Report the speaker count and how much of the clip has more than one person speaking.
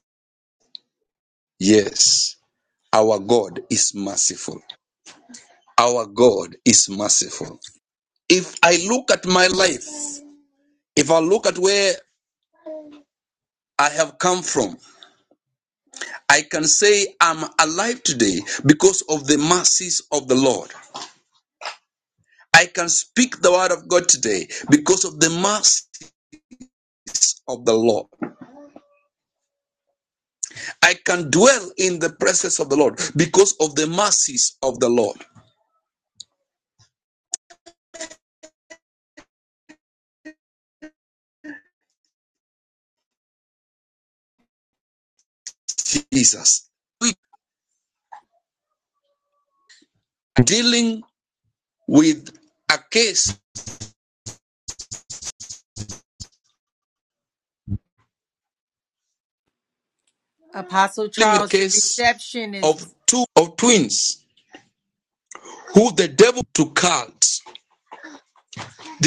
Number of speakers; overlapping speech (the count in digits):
2, about 1%